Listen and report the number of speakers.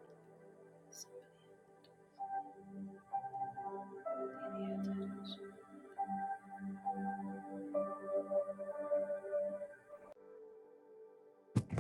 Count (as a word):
zero